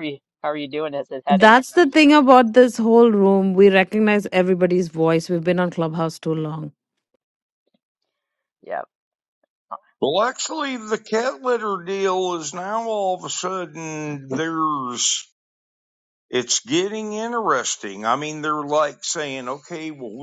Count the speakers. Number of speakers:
3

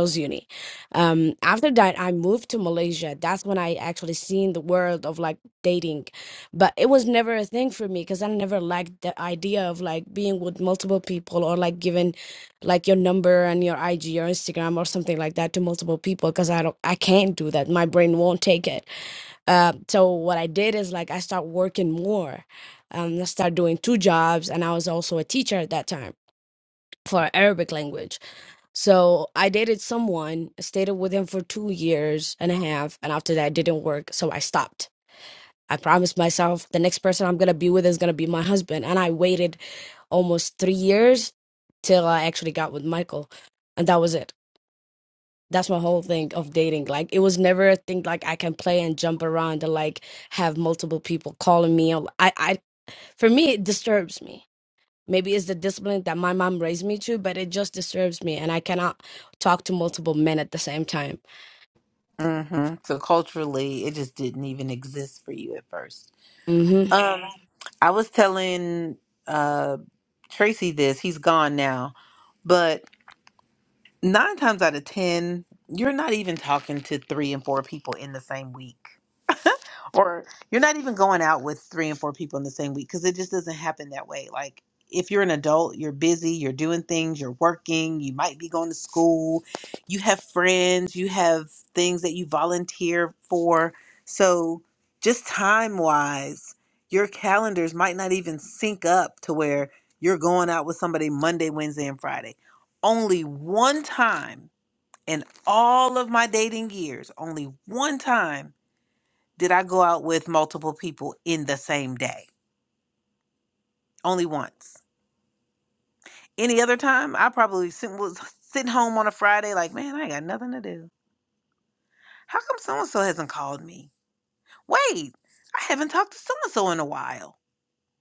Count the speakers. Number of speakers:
2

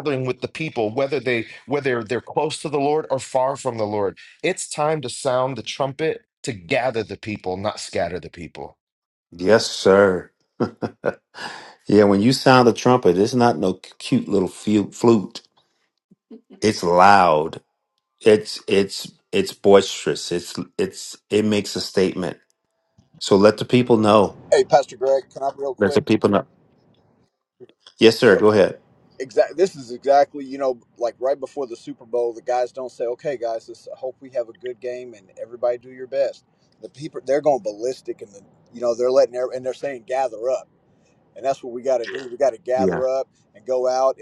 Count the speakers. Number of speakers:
3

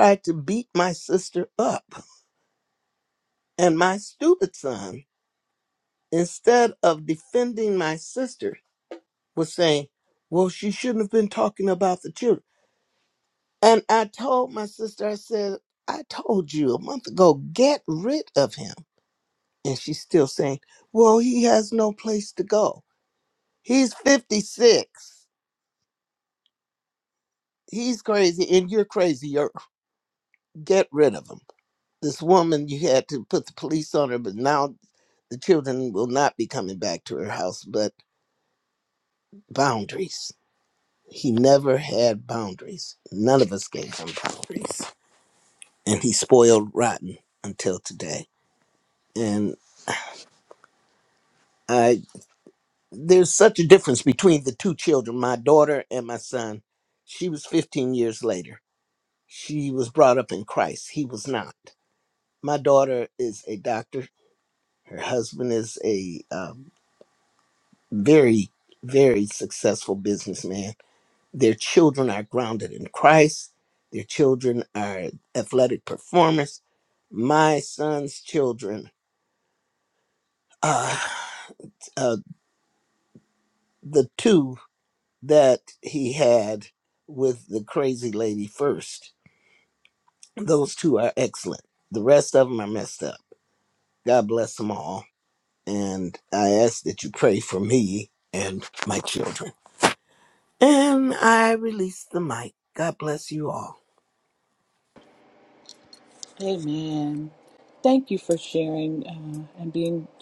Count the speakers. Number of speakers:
2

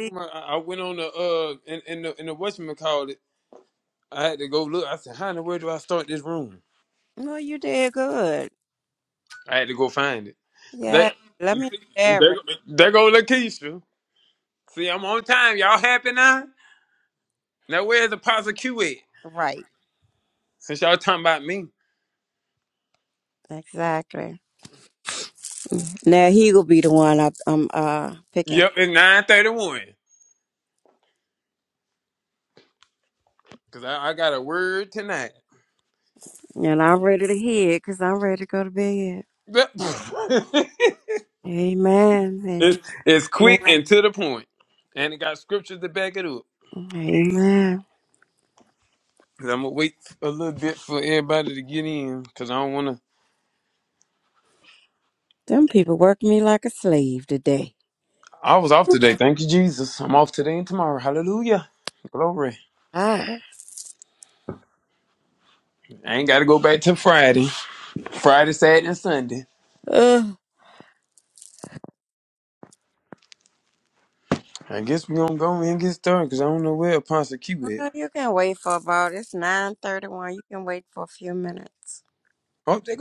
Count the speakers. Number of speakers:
2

